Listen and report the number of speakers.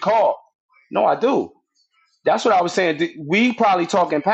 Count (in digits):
1